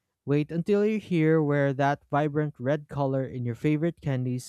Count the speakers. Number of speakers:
1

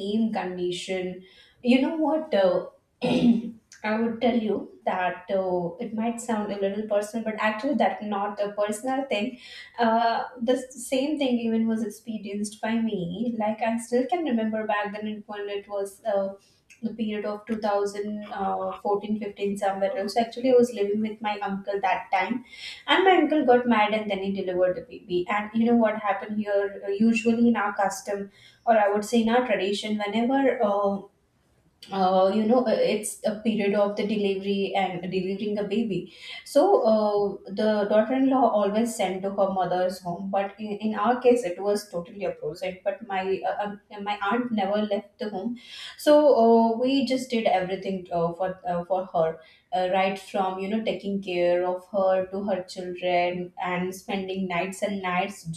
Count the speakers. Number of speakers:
1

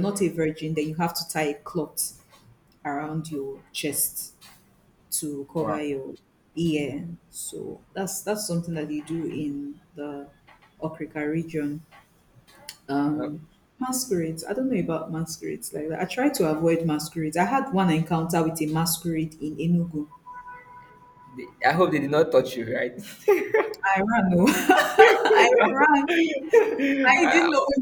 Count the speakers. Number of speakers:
2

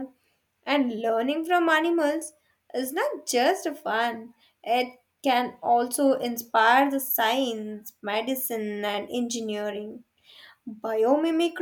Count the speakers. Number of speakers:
1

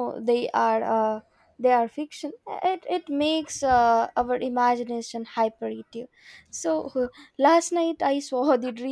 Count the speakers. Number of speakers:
1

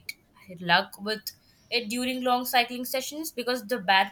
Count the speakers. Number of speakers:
1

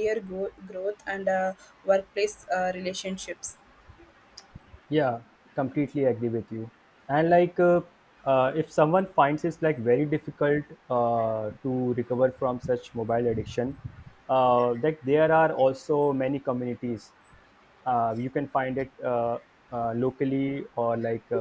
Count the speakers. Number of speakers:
2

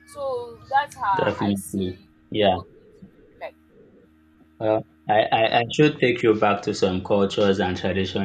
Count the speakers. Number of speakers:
2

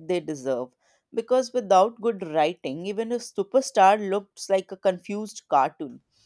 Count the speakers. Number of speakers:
1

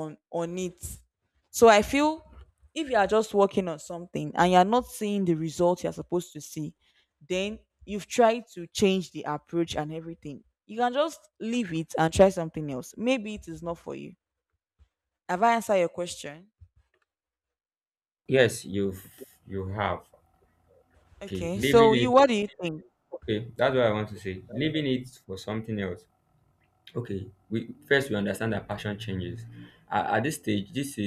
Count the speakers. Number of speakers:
2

